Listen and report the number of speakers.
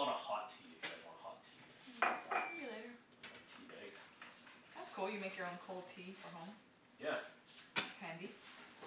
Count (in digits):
2